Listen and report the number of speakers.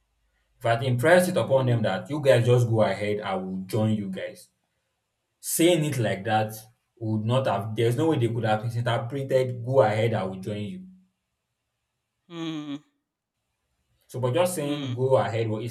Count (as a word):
two